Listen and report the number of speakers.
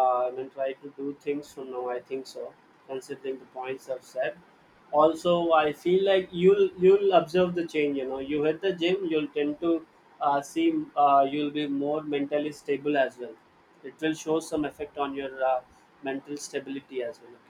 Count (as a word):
one